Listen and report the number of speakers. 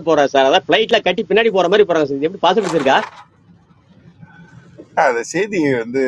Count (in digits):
2